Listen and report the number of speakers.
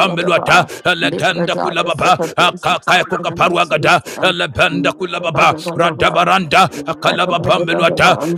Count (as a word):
two